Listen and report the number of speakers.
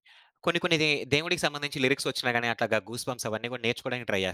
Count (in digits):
1